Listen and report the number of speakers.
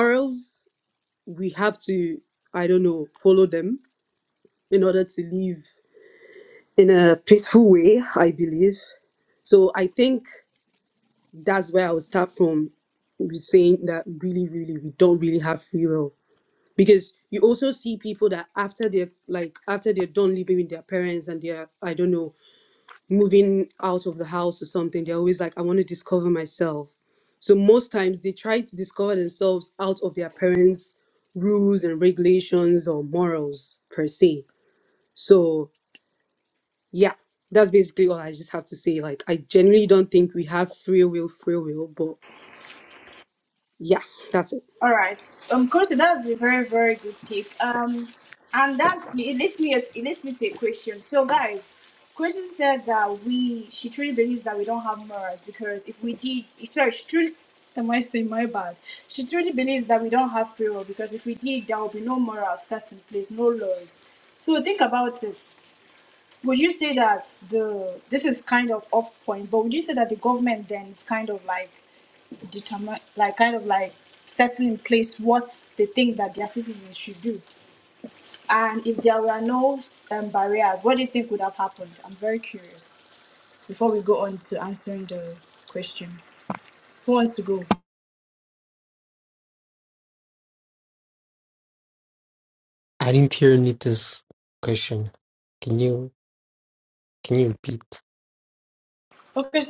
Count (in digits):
3